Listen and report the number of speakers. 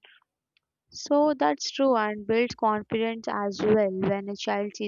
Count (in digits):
1